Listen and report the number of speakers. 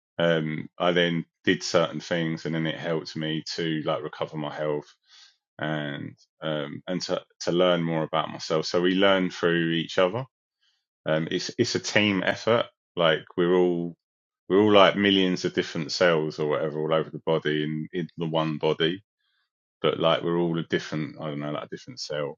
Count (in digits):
1